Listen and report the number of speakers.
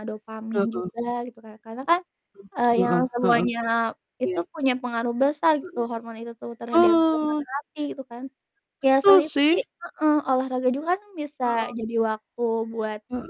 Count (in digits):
2